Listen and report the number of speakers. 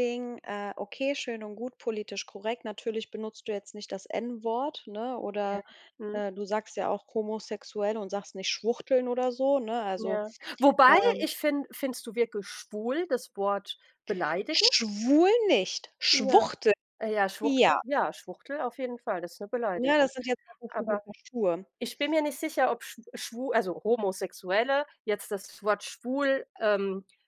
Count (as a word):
two